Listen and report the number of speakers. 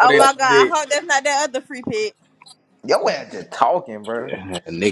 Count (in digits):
3